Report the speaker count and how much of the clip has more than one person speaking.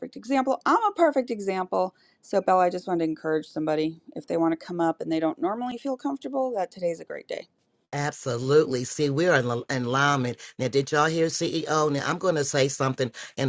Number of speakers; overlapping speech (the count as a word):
two, no overlap